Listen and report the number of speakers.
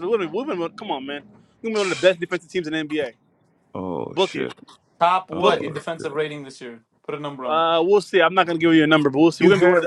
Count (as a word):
three